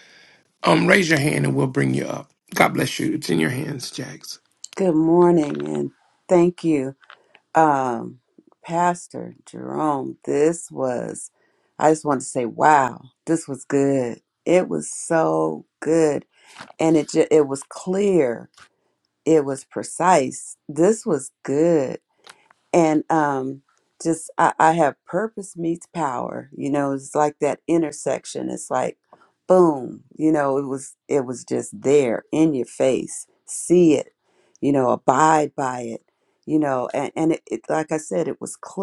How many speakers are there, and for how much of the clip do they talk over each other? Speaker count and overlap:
2, no overlap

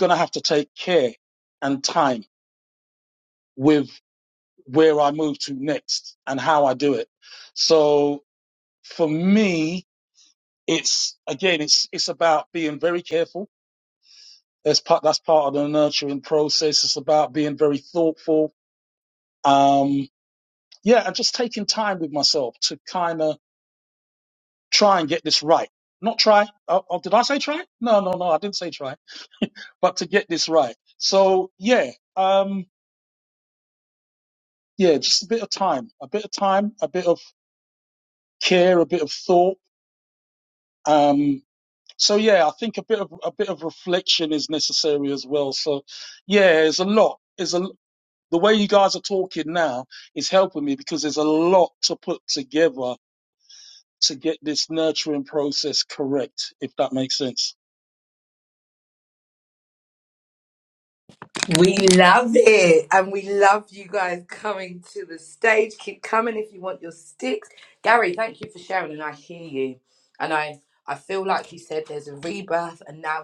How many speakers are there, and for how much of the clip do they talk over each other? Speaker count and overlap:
2, no overlap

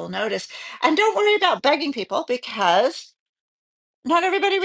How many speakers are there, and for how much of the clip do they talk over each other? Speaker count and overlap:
1, no overlap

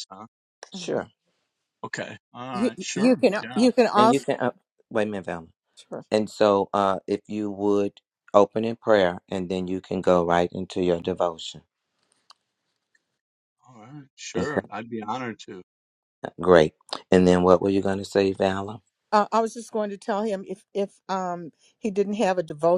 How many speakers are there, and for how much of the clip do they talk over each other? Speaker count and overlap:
3, about 8%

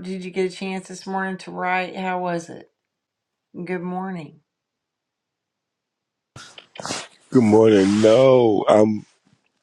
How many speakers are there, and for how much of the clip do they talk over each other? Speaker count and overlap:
2, no overlap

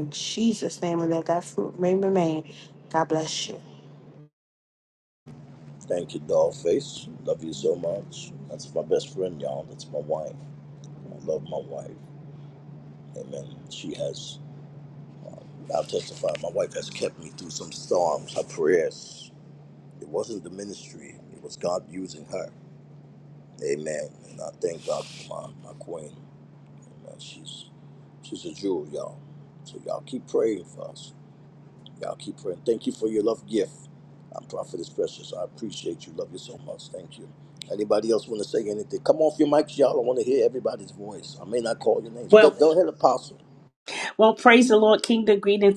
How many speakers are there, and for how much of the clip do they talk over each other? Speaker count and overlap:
3, about 1%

